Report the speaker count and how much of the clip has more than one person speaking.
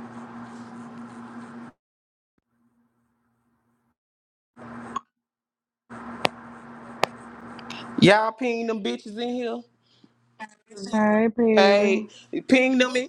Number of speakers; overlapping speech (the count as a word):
two, about 3%